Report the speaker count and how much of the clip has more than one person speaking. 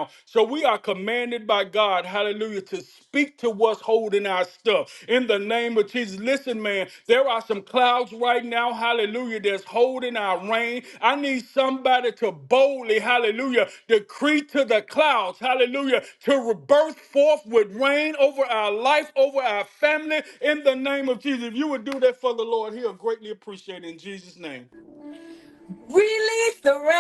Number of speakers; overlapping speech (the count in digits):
2, no overlap